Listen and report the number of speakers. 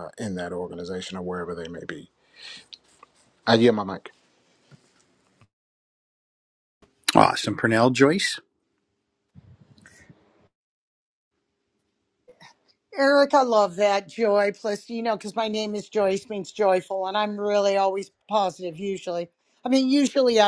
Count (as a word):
three